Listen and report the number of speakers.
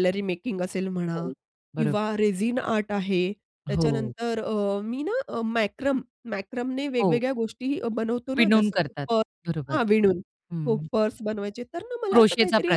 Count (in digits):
2